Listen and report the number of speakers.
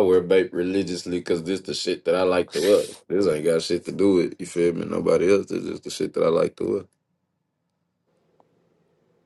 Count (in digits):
1